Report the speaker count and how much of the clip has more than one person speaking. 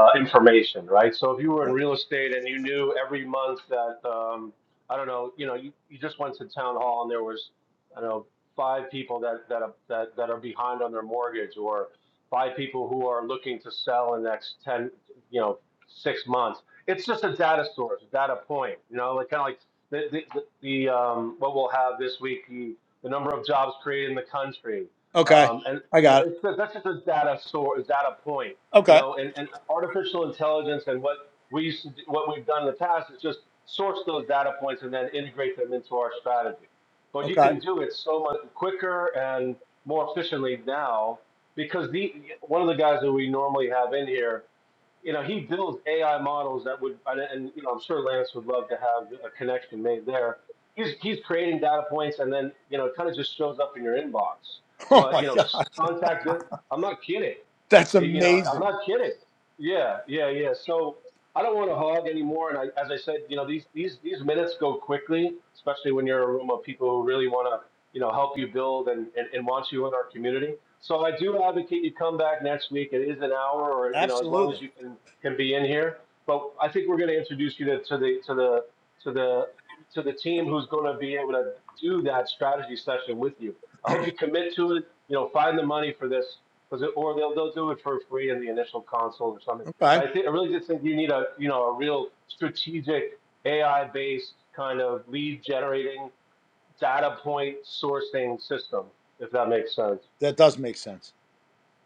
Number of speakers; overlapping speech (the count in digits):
2, about 3%